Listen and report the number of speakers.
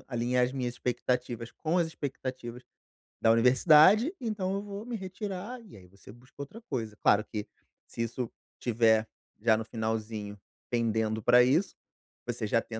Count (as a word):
one